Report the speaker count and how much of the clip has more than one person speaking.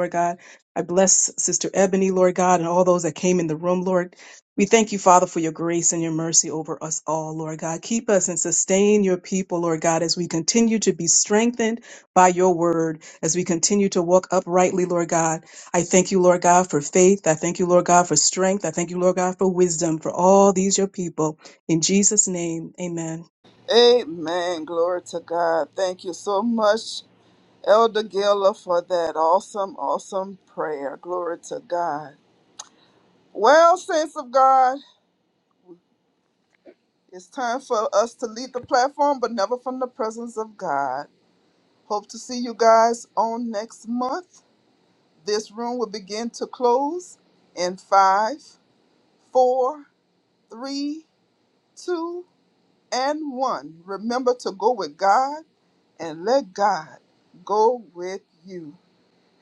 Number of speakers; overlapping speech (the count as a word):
two, no overlap